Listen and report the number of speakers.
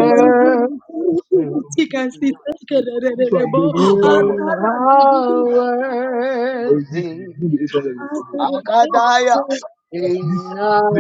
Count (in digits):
3